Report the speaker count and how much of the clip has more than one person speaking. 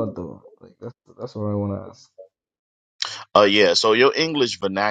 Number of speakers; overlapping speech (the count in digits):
2, no overlap